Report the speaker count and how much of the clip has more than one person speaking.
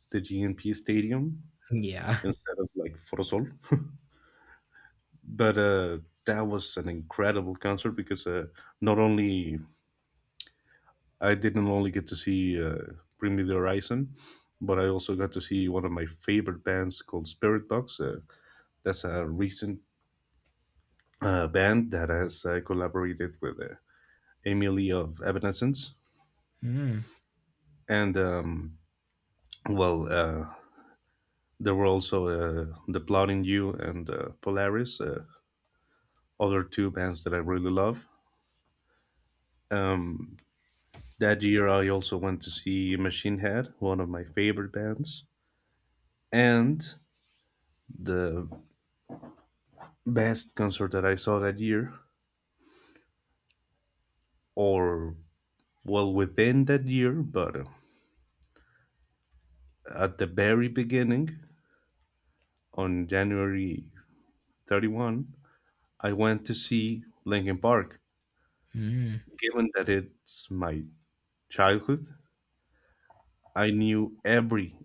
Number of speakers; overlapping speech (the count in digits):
2, under 1%